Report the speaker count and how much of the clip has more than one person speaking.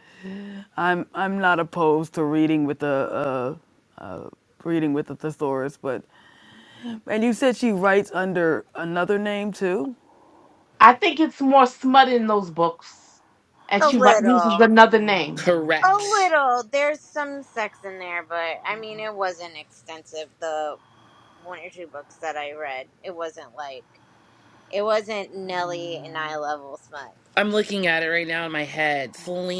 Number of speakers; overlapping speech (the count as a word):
four, about 5%